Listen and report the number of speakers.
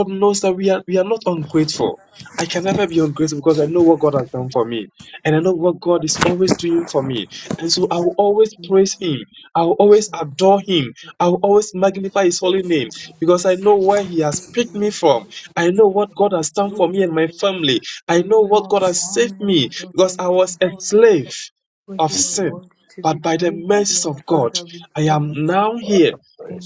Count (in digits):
2